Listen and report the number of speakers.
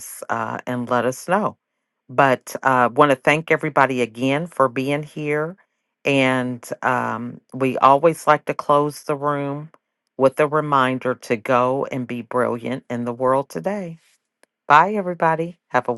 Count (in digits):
1